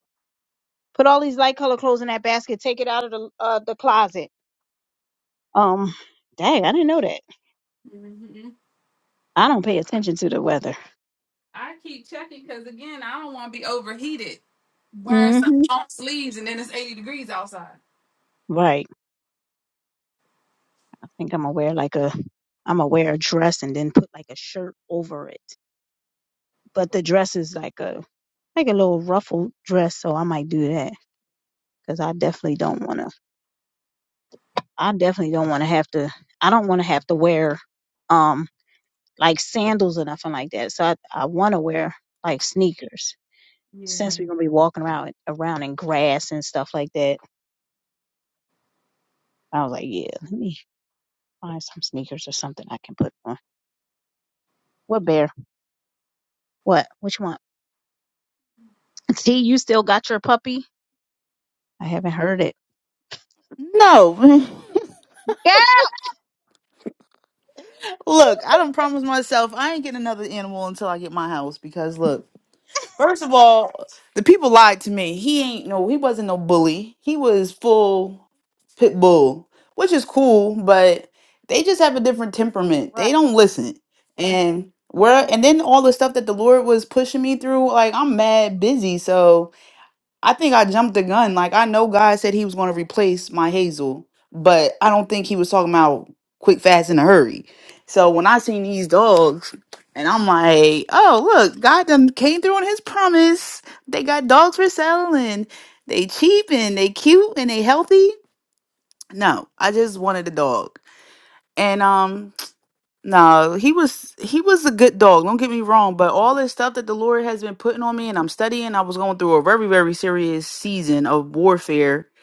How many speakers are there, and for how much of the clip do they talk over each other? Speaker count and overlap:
three, about 1%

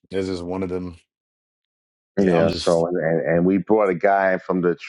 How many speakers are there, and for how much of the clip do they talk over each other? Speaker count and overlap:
two, about 10%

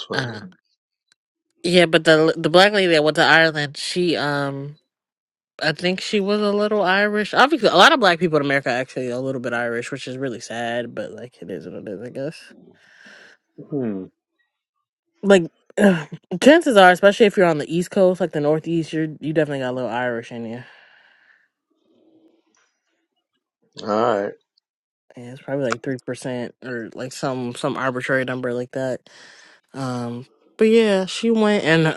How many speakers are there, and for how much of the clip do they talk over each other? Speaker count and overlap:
two, about 1%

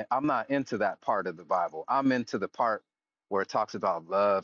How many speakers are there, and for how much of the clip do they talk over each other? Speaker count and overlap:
one, no overlap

